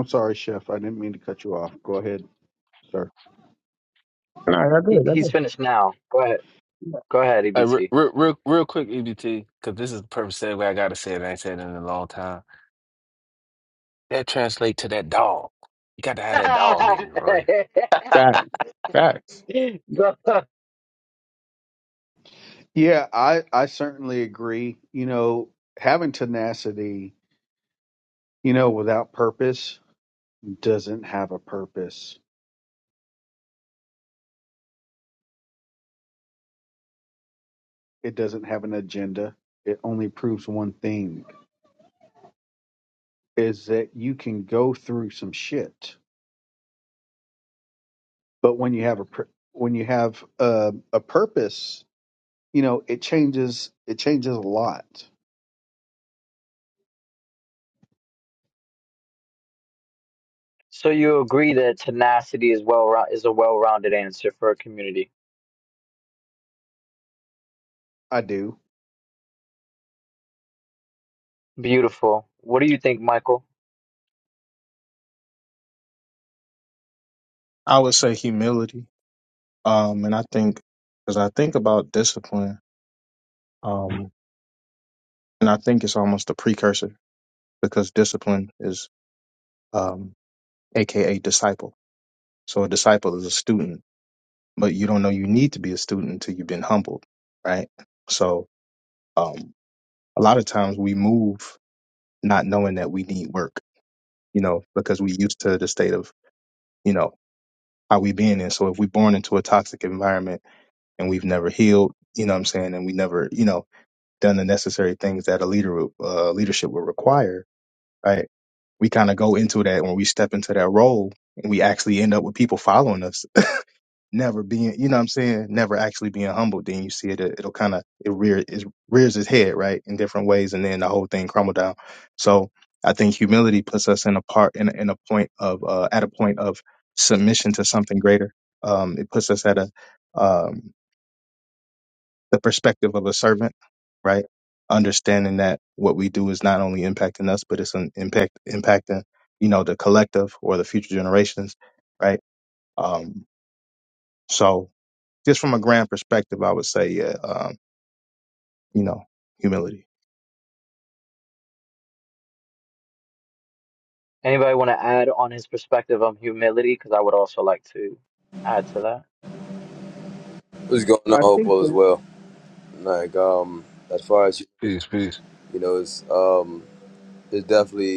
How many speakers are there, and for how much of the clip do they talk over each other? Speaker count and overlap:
6, about 1%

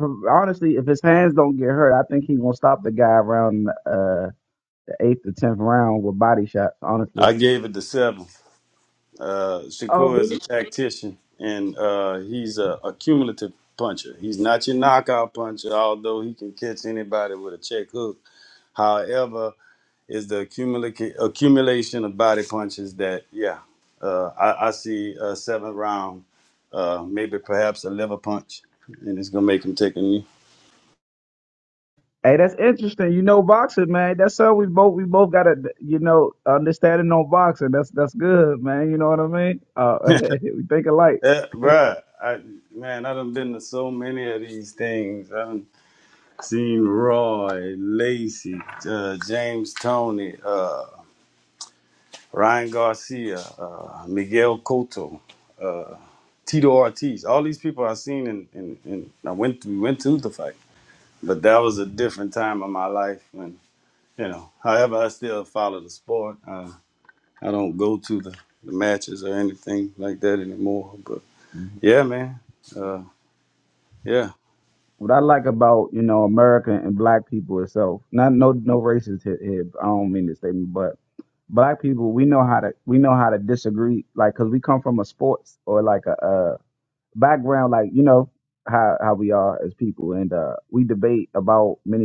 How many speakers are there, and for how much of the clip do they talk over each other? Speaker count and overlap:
2, about 1%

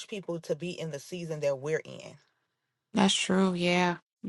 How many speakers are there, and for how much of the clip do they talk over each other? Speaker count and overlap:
2, no overlap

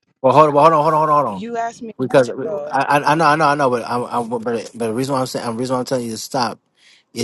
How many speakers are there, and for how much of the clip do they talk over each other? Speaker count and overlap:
2, about 7%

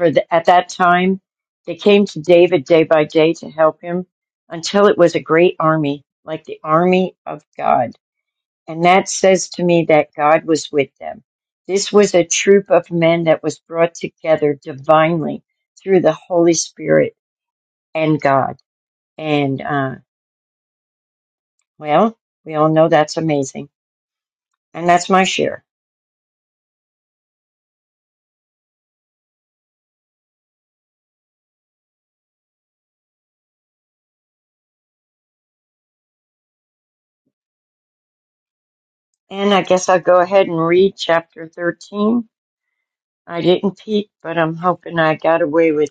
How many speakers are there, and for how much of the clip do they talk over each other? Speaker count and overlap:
1, no overlap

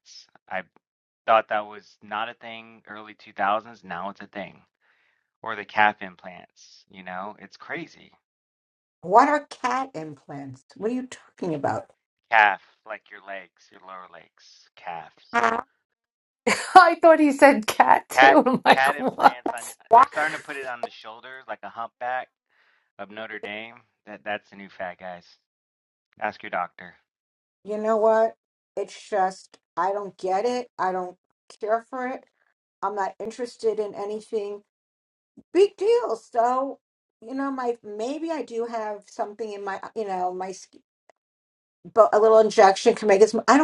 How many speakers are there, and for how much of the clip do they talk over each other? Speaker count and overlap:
3, about 2%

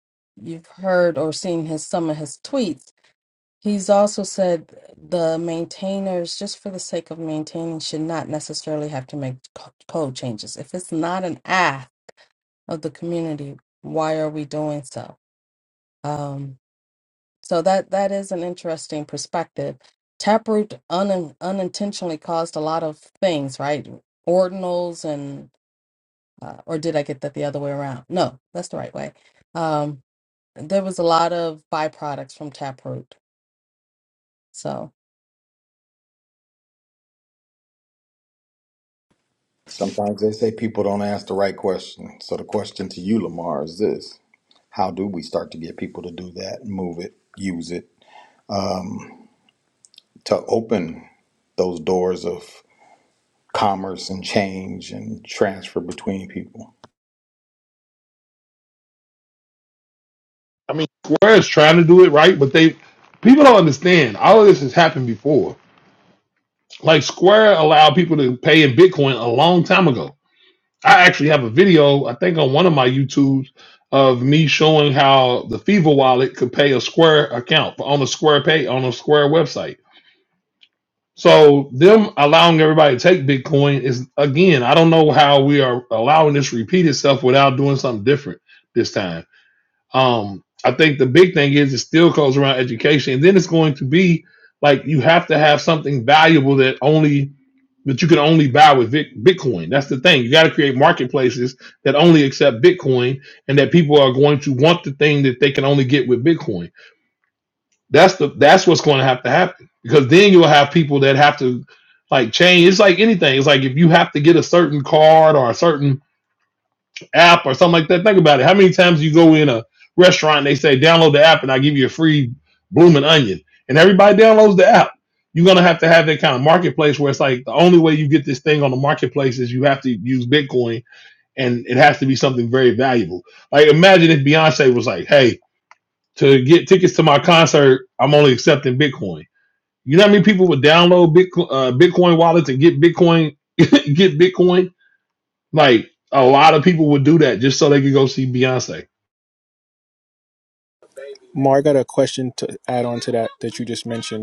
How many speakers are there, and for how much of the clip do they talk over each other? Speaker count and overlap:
4, no overlap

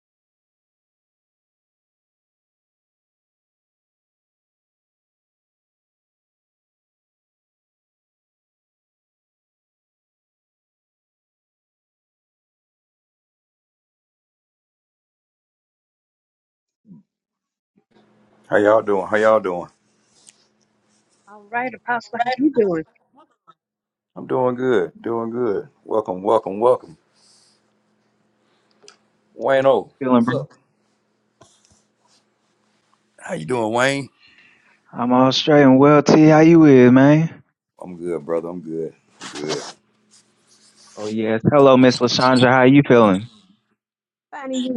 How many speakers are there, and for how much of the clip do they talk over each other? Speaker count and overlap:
3, about 1%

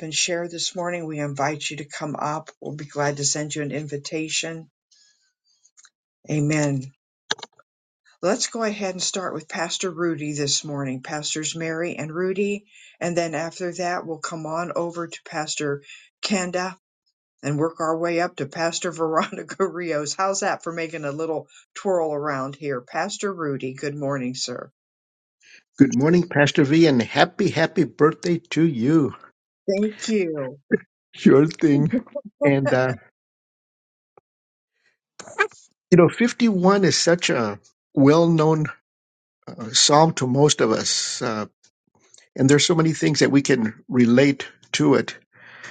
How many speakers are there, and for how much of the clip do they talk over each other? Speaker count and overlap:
2, no overlap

